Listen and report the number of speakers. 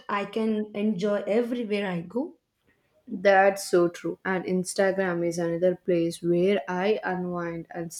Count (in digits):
2